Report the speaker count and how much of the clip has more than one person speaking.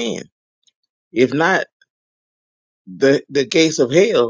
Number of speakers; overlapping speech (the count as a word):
one, no overlap